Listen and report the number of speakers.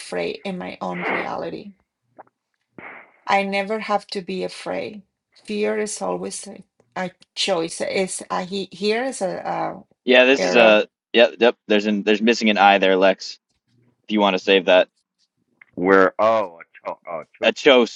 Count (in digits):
3